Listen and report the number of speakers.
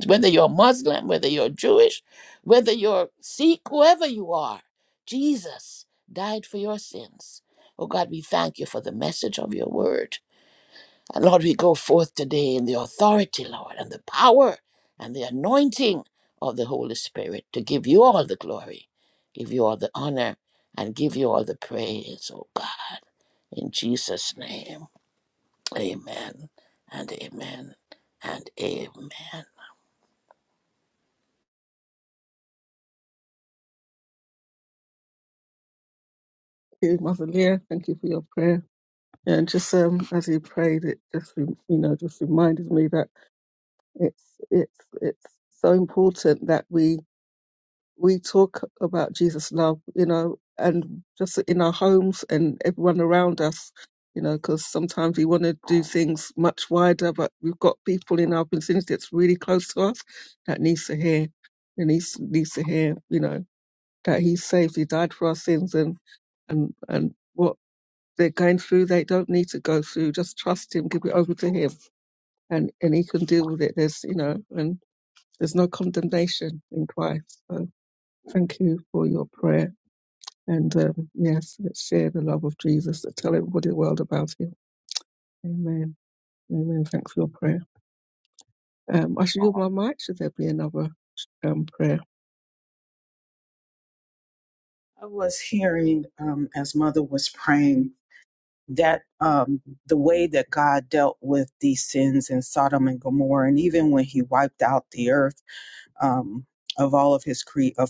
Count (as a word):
three